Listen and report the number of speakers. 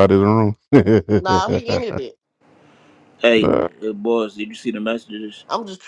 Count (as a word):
three